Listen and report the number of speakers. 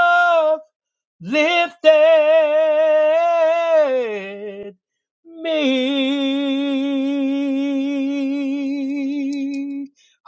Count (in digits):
1